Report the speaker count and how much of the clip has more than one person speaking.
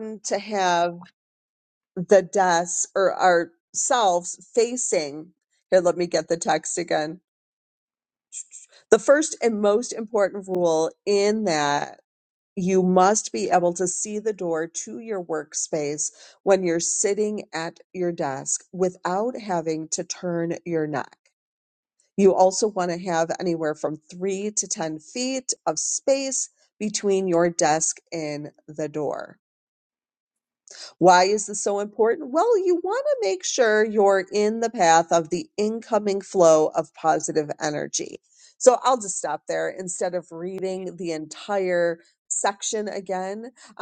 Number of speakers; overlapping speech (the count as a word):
one, no overlap